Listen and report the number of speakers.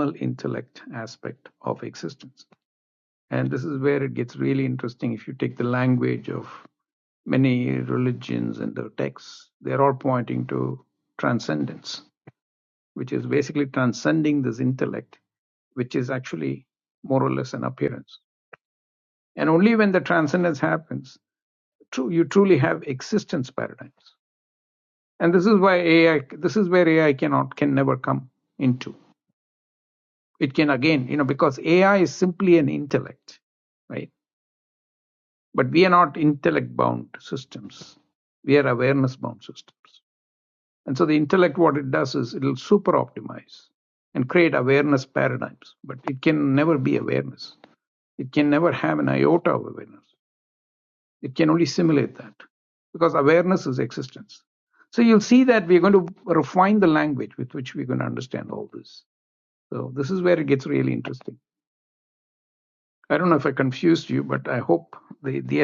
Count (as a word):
one